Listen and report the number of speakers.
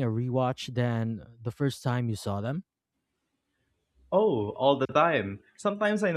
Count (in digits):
2